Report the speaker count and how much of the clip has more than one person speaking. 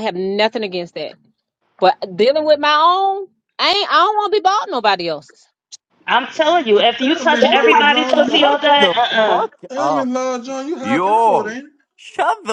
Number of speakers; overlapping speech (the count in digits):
4, about 28%